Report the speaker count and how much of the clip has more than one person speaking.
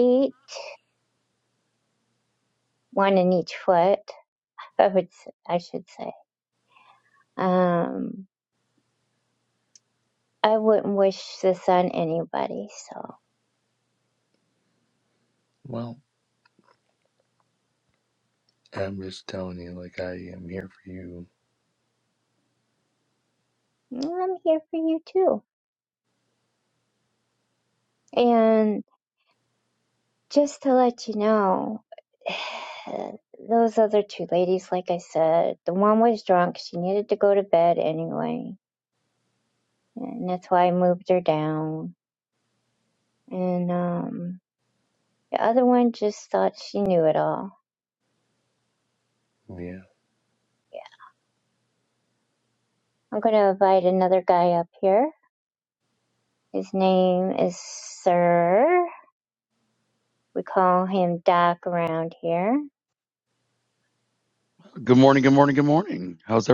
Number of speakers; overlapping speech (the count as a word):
three, no overlap